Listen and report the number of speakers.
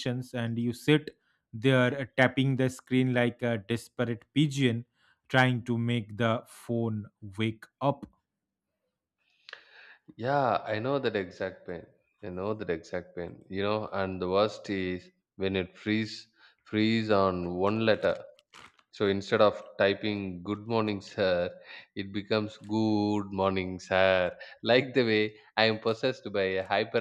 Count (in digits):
2